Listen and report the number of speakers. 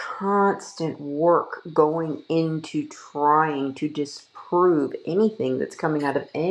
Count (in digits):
1